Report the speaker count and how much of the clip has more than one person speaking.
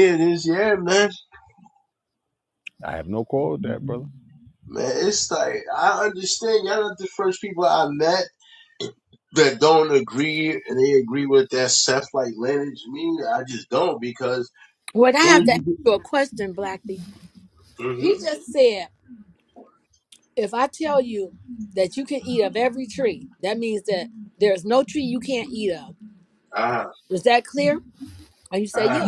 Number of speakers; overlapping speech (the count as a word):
three, about 4%